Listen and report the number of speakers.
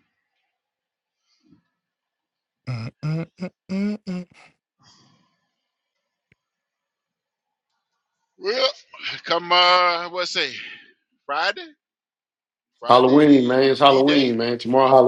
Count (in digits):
3